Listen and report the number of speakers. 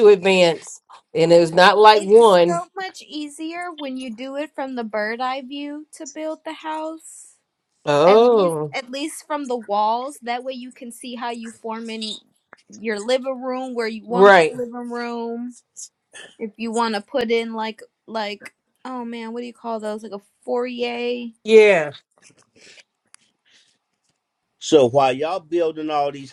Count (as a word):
three